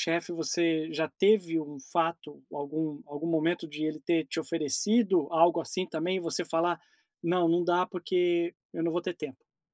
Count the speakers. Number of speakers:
one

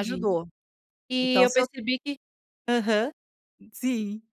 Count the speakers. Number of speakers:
two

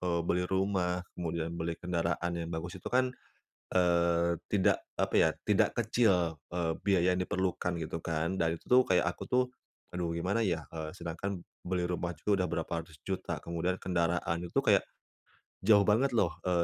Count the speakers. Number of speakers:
one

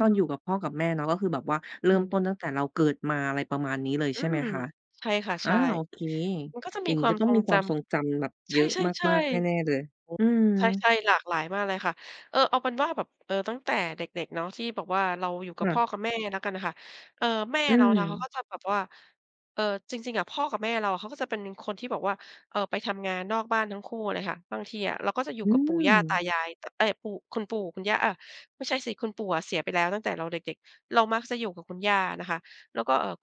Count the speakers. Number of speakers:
two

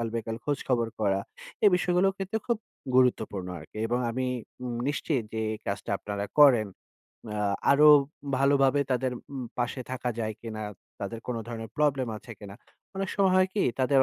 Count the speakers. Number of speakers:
one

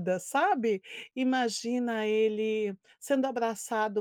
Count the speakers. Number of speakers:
one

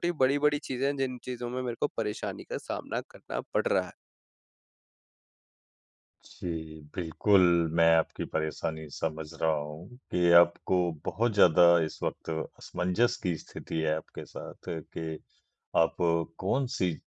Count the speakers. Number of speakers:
two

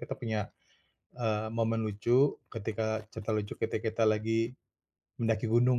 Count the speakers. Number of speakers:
one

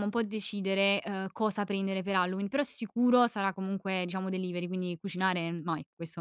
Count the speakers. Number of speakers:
one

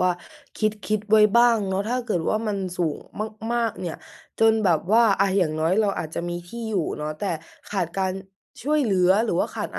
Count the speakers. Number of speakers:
one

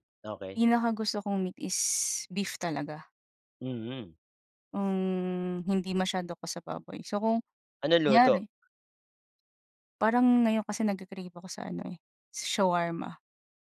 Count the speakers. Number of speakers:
two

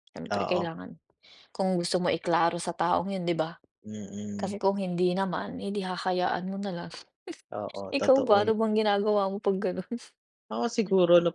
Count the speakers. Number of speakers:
two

